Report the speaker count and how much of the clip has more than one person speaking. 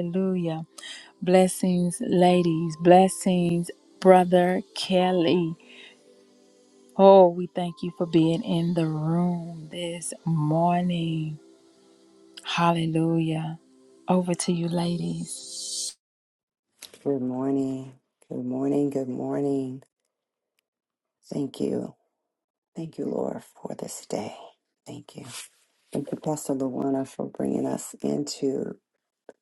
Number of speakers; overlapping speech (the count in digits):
2, no overlap